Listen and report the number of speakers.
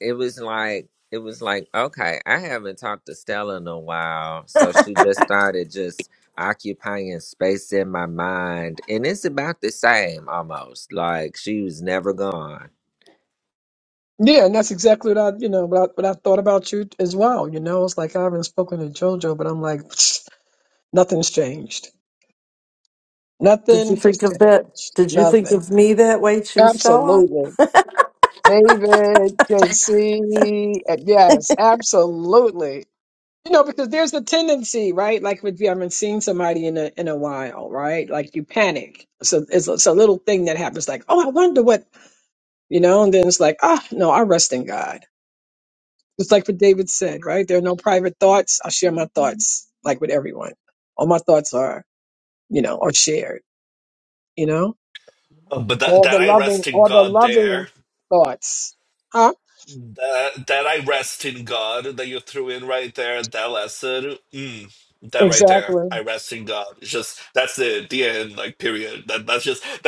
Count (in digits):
4